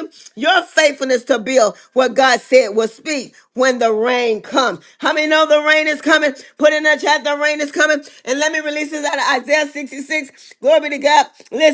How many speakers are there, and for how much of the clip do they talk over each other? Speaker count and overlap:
1, no overlap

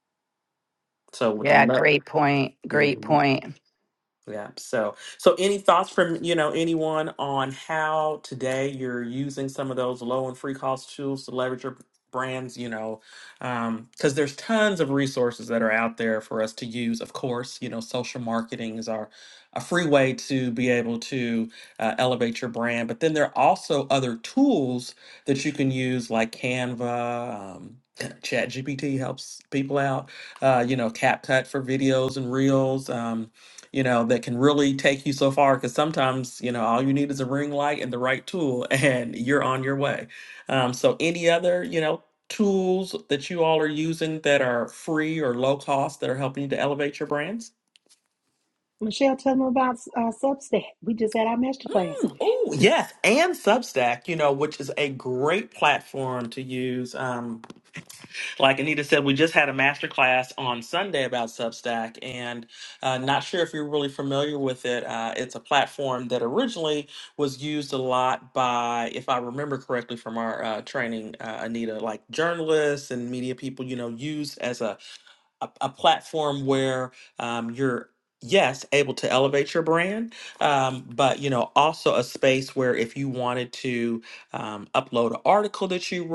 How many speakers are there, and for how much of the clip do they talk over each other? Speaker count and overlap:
3, about 1%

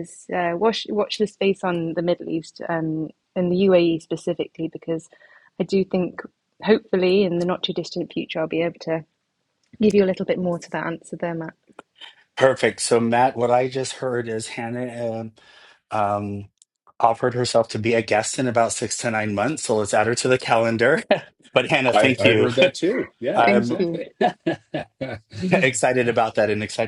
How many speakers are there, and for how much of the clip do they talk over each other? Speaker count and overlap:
3, about 5%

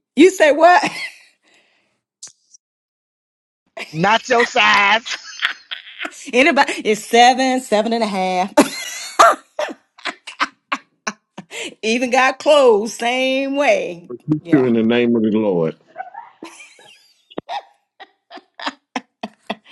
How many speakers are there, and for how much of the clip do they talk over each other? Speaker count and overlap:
3, about 1%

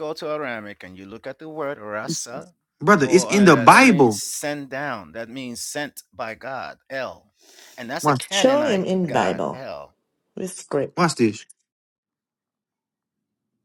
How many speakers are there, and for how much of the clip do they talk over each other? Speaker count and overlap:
3, about 19%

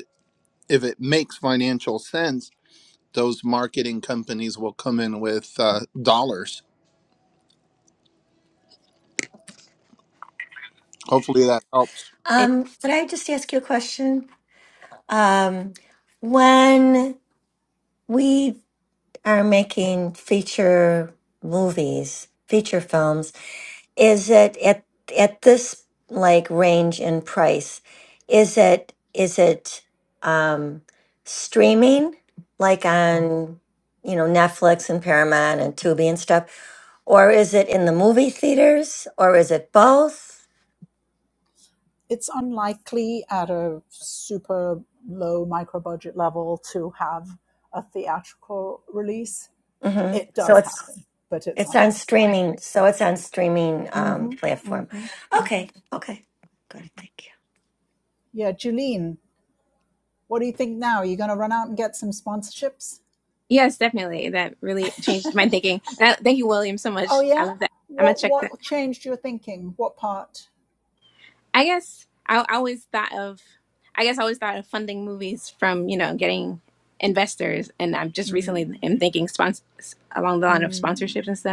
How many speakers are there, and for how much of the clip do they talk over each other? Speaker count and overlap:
4, about 6%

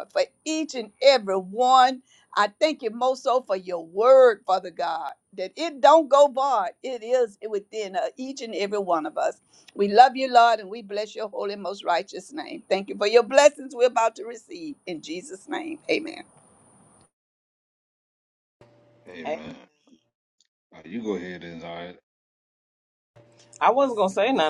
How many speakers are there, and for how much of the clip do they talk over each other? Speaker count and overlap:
3, about 1%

